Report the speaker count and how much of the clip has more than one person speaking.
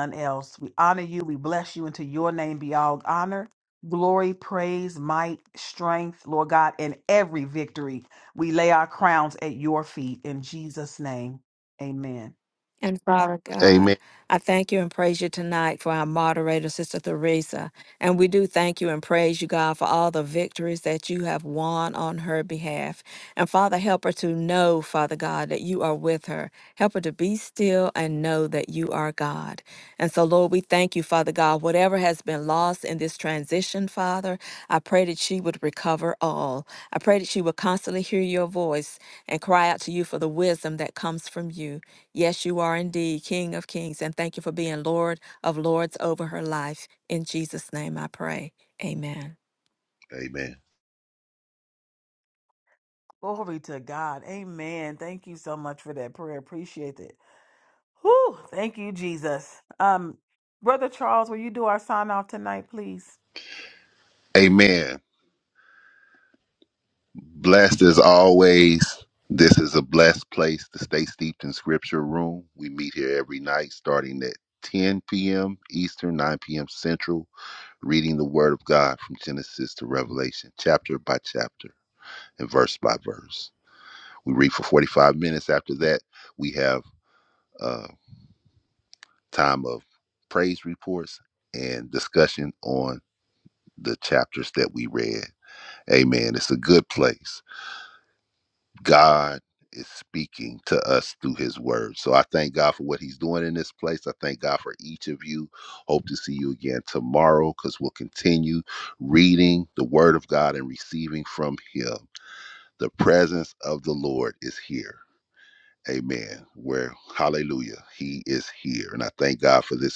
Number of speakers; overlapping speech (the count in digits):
3, under 1%